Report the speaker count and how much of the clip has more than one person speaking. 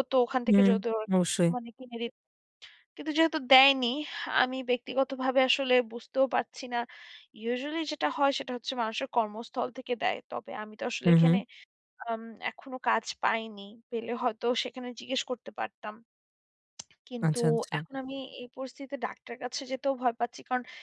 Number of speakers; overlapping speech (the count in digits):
2, about 6%